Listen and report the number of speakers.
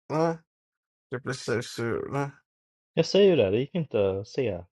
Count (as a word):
two